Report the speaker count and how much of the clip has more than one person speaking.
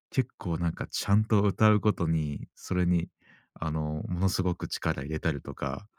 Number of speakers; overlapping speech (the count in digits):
1, no overlap